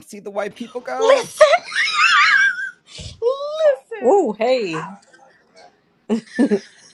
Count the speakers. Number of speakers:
three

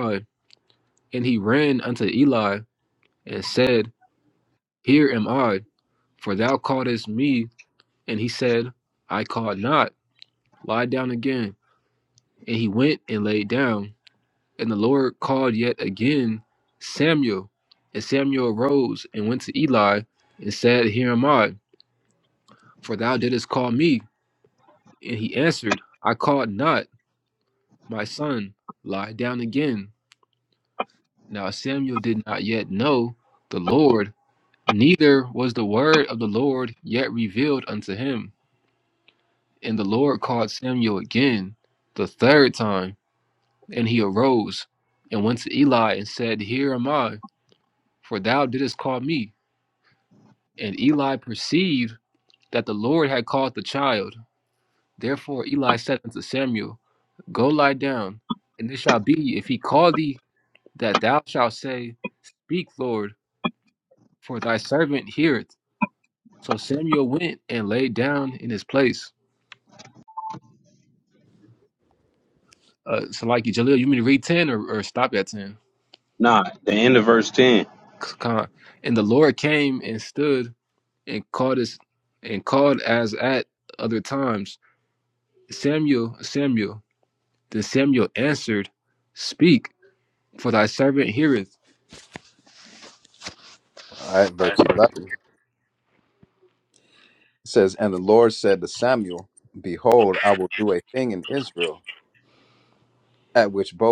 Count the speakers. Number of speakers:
three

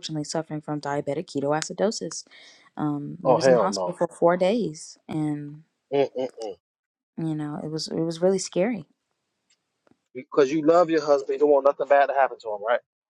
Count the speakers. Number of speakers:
two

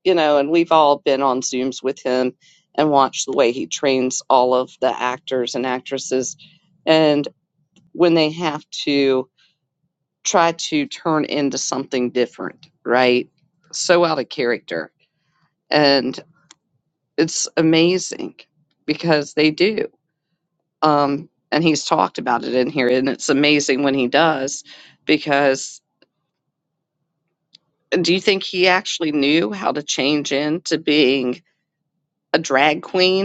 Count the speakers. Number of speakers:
one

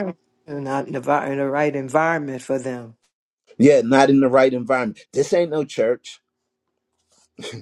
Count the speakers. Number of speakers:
two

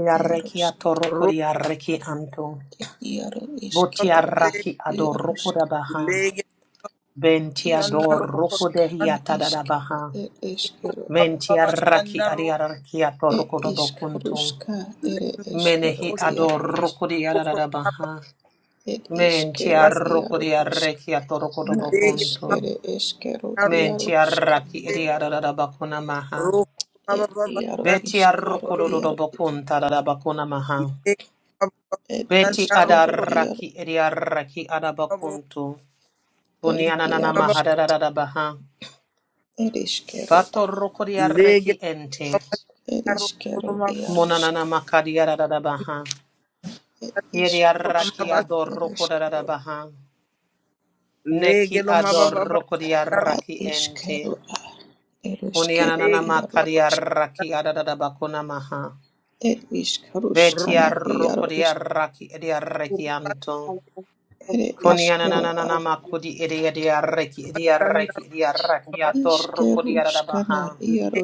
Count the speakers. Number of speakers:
three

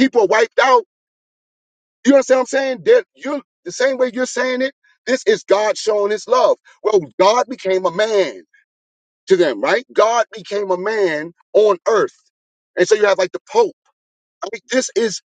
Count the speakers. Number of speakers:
one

